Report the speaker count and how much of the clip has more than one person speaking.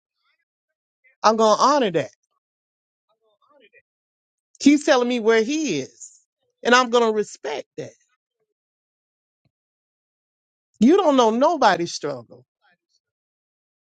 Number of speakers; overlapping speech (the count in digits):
1, no overlap